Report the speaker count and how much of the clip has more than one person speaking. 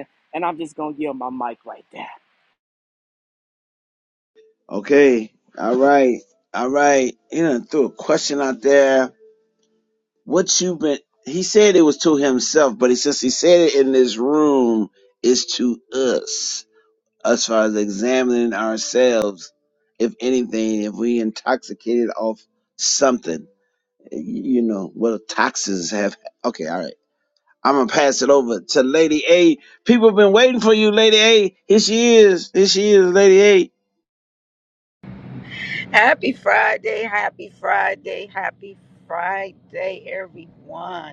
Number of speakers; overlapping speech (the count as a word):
three, no overlap